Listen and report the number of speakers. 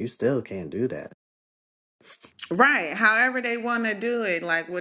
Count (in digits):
2